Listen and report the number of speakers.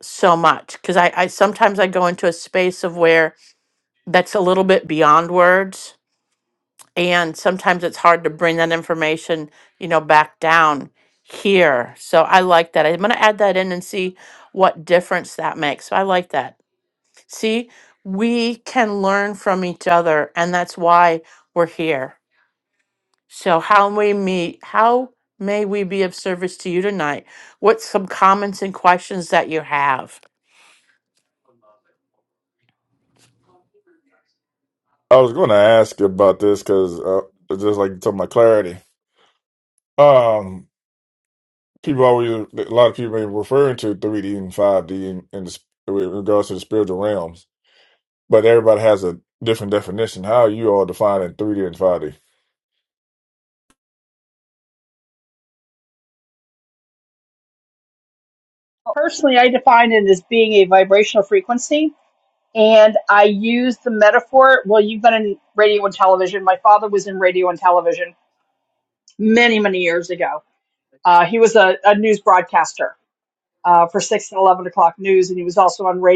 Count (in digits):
3